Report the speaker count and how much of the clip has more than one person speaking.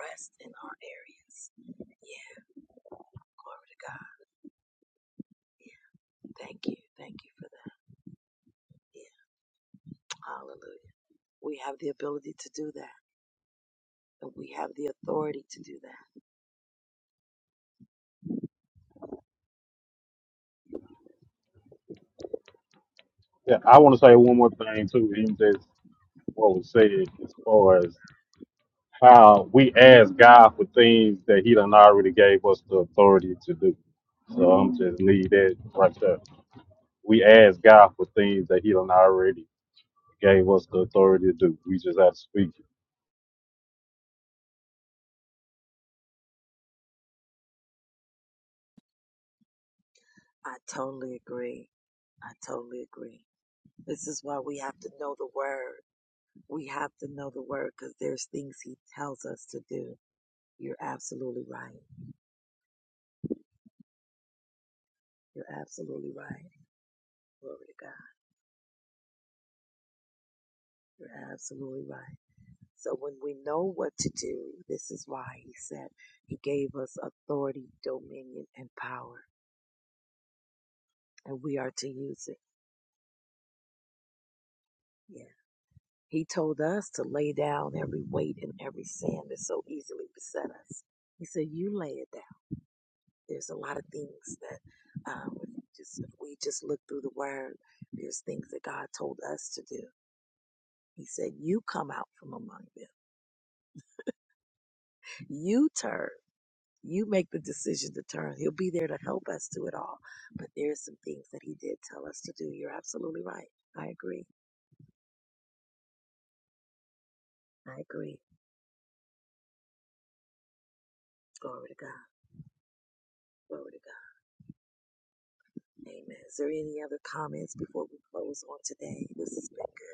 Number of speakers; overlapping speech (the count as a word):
two, no overlap